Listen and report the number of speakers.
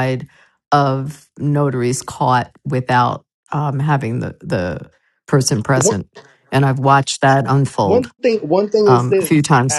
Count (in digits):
2